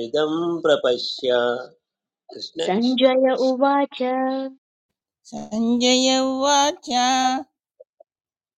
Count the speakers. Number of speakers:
three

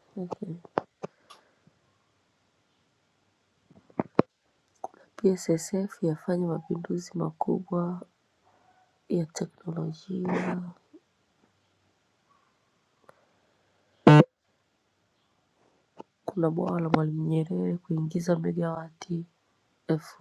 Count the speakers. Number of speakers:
one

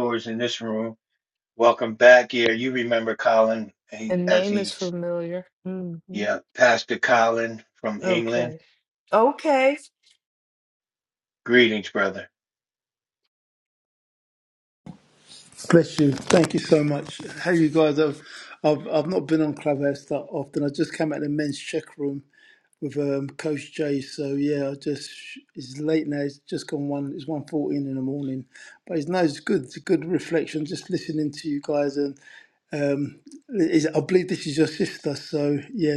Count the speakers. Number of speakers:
three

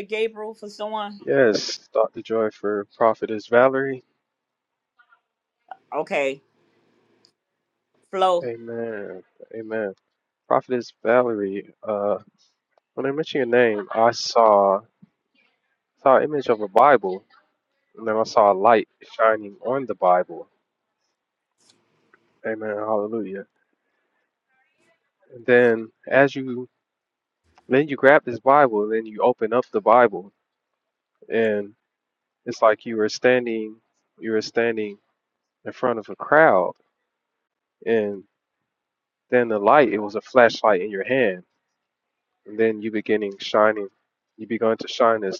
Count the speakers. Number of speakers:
two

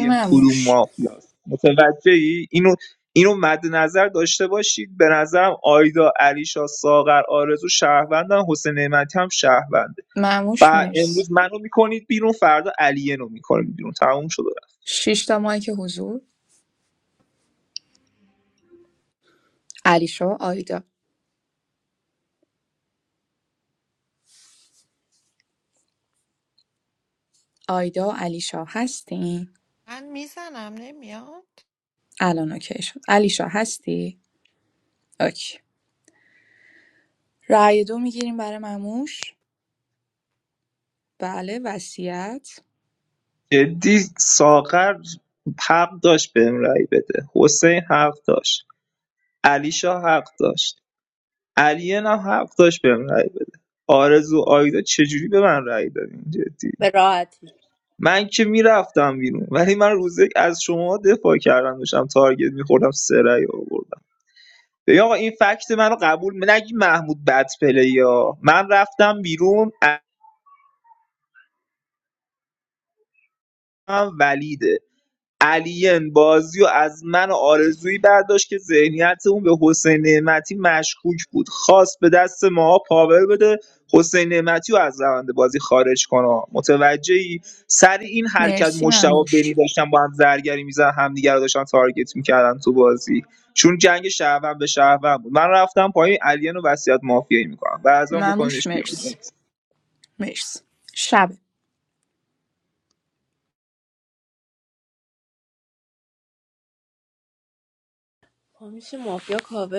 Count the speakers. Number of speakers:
four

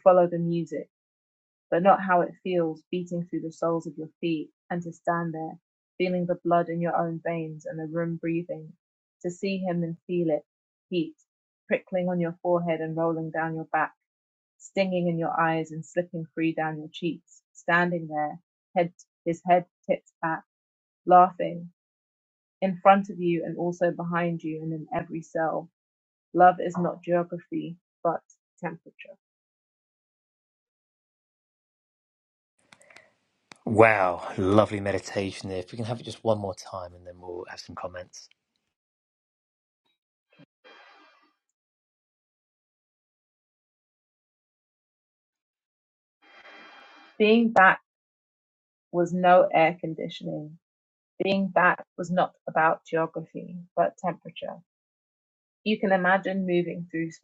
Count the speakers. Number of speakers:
two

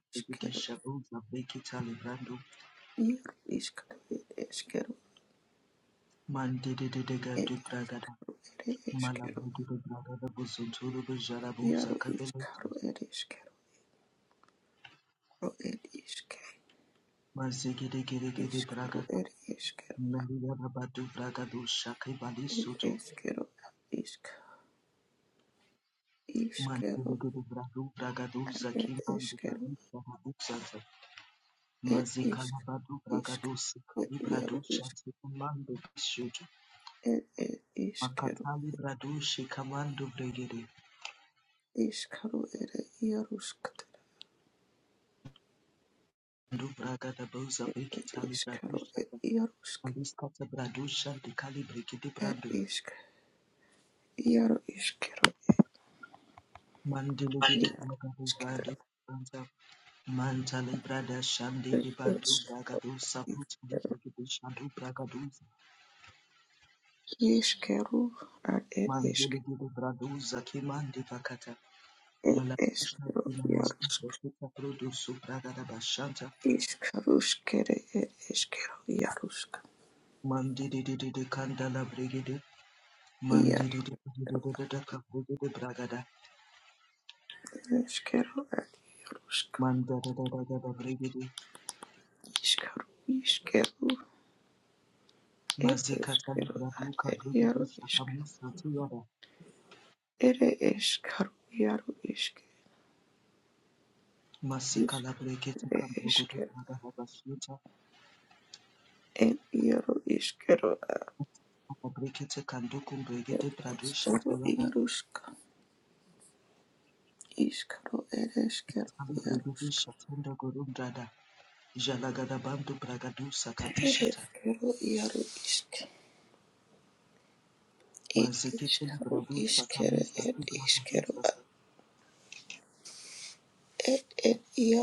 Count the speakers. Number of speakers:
two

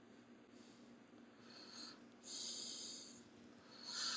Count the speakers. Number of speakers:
zero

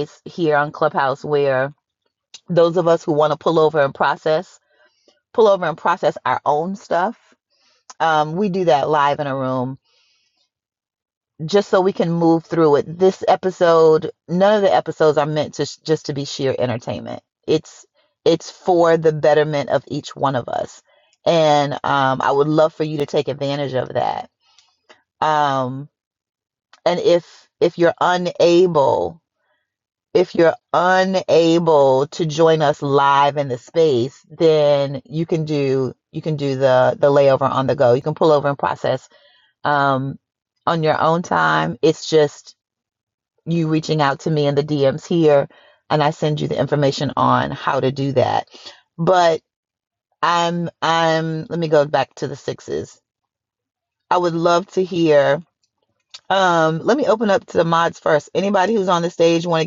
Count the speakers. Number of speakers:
one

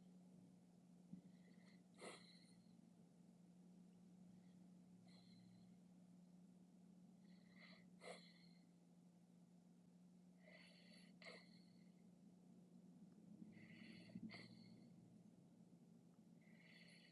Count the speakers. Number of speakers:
zero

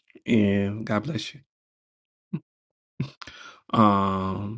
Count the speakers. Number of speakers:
one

